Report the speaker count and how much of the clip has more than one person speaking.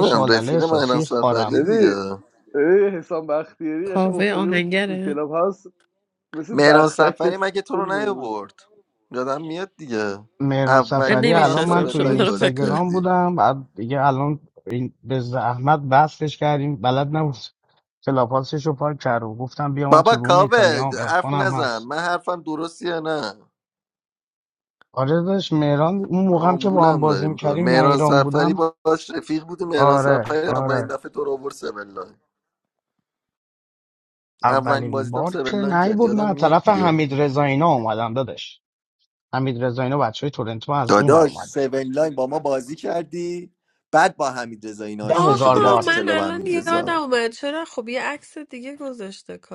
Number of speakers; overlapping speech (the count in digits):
4, about 35%